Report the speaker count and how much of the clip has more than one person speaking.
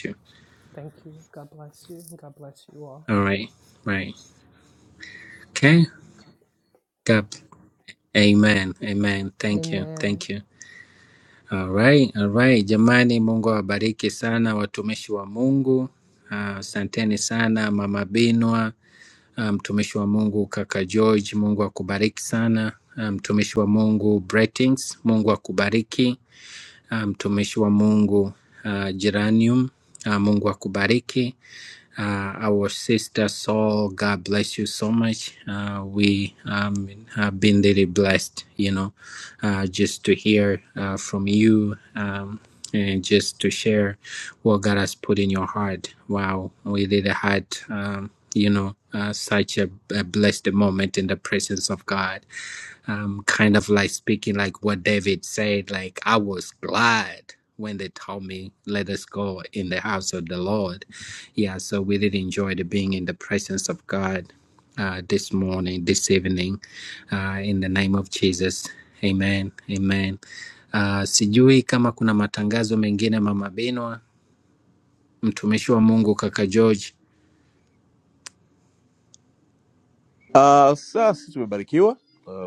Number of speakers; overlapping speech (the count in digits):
3, about 1%